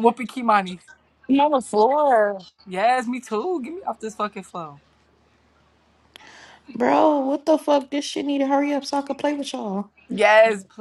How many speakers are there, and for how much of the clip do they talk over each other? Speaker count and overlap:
3, no overlap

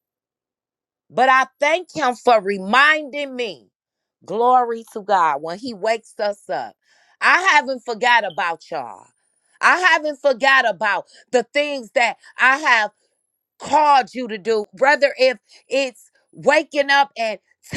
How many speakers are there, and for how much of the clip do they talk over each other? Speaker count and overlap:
1, no overlap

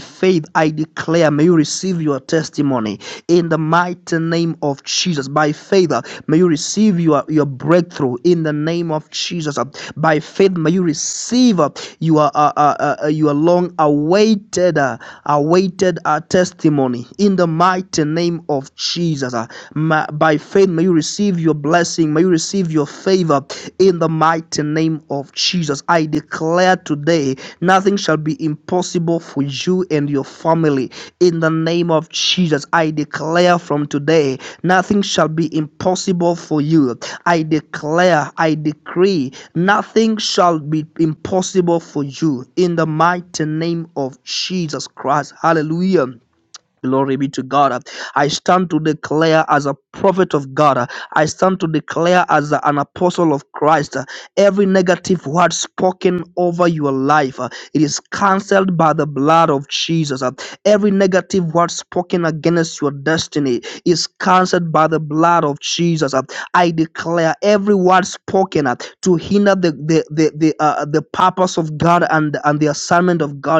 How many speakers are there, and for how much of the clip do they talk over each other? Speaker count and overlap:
1, no overlap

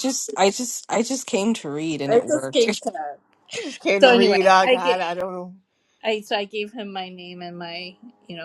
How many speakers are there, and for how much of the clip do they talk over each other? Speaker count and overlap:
3, about 20%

